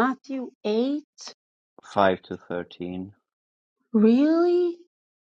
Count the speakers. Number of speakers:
2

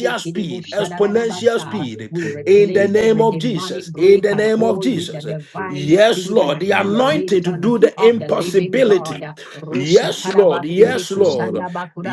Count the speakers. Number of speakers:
2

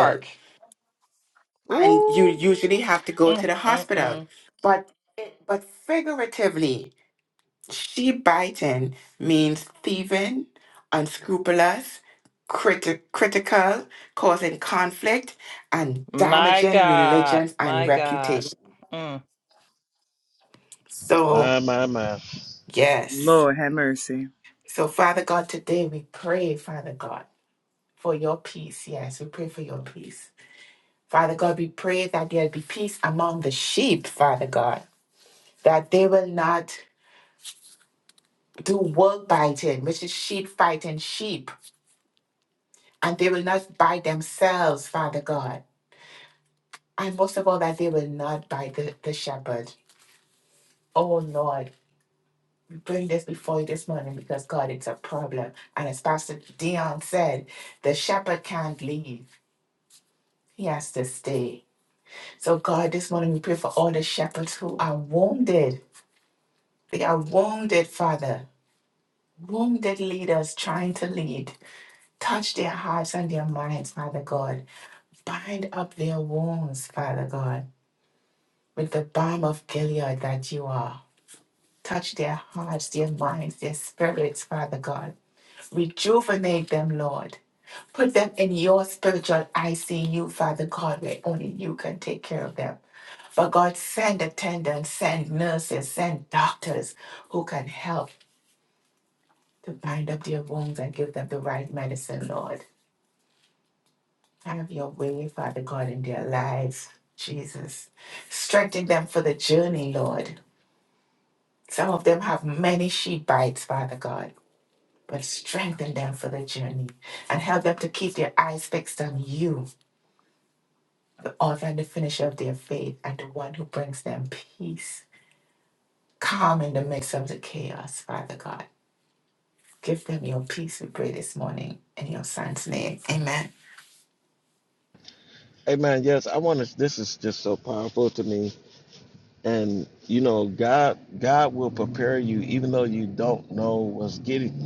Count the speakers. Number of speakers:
4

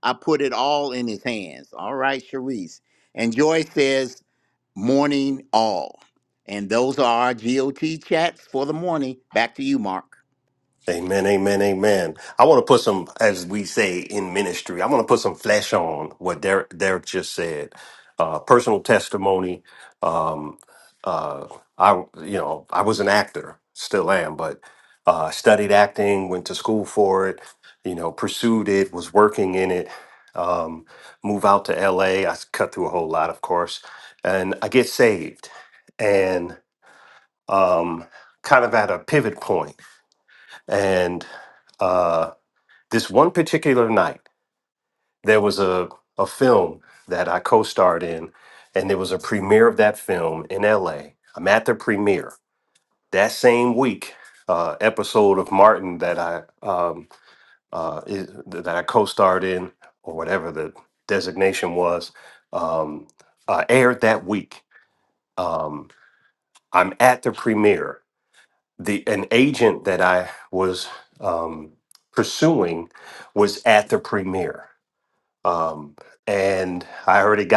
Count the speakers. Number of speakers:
2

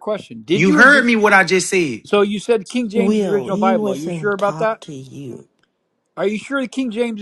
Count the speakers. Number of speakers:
3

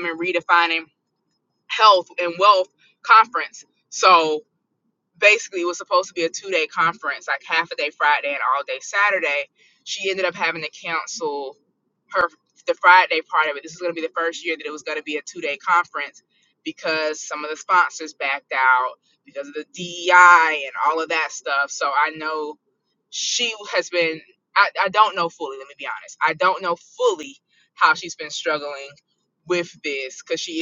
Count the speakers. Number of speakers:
1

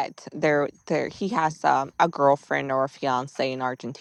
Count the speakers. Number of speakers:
1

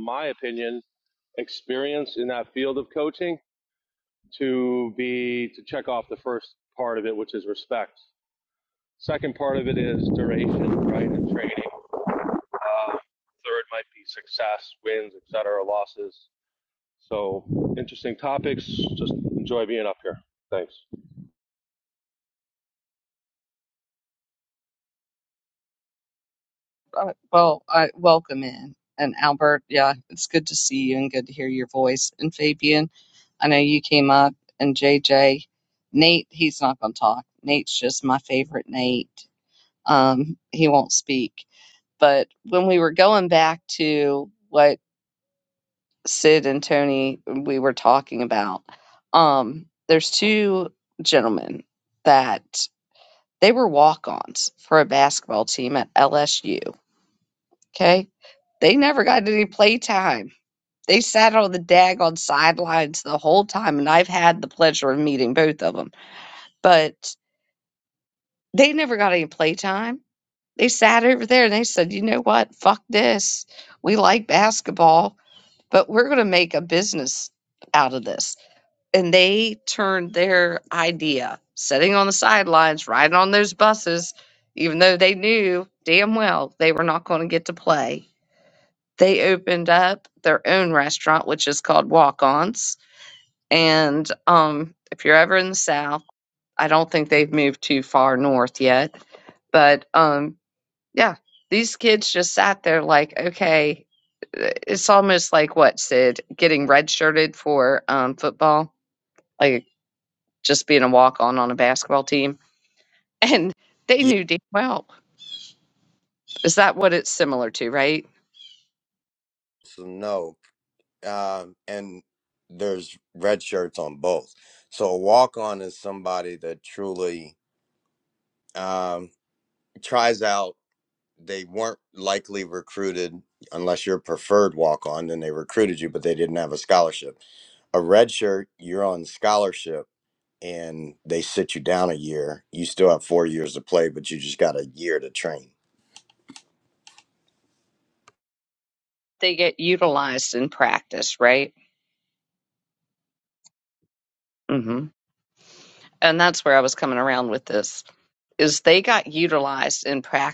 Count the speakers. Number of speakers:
3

